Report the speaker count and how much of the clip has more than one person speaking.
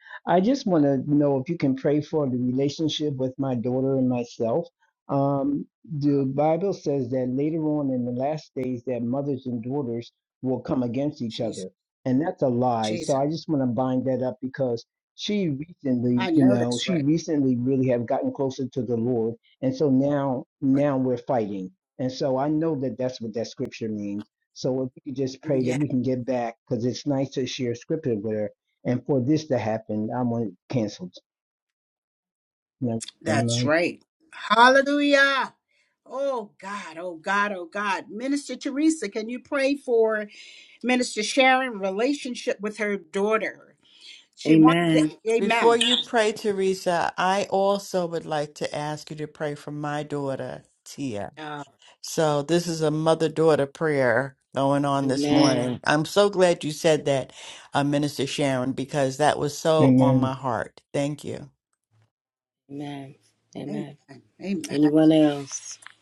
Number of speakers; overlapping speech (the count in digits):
4, about 8%